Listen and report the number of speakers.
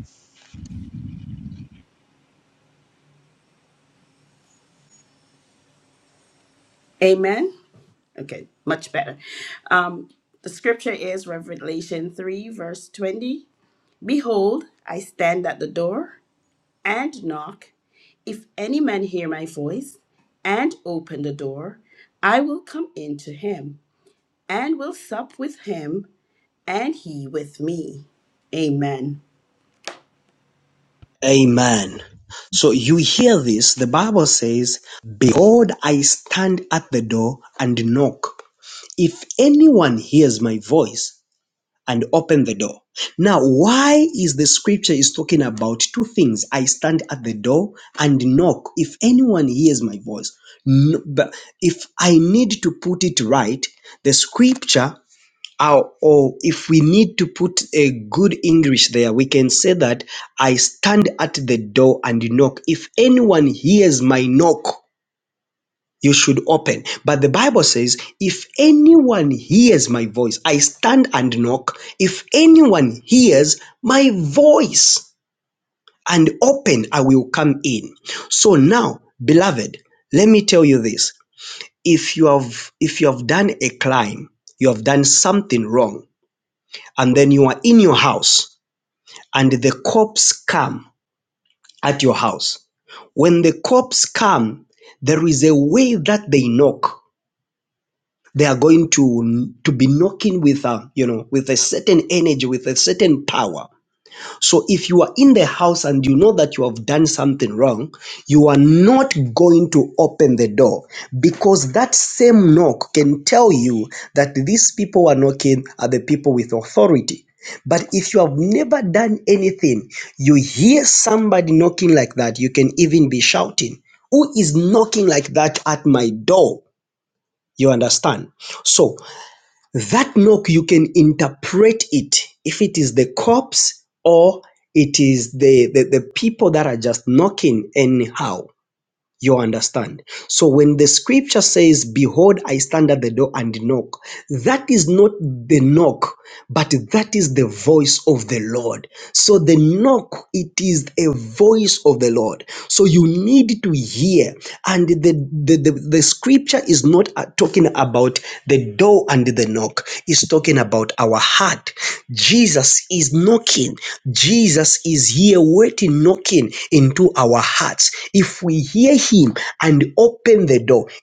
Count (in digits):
2